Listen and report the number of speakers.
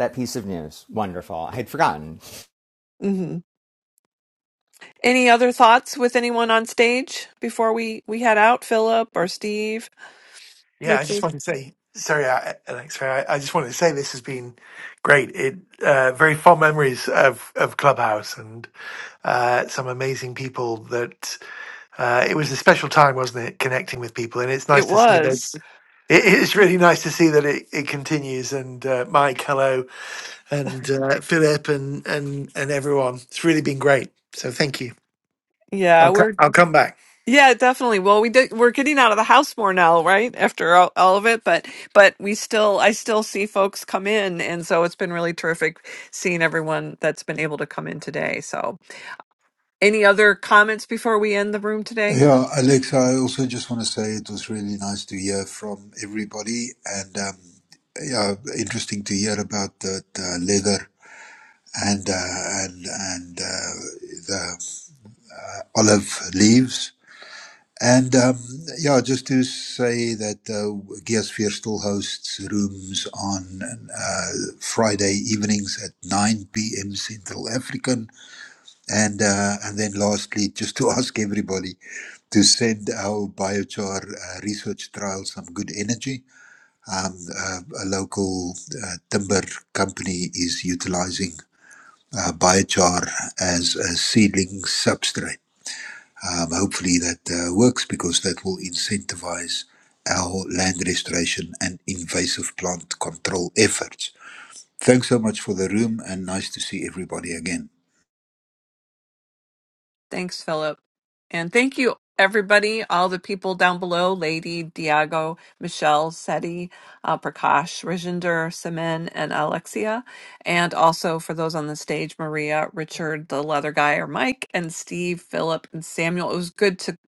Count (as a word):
four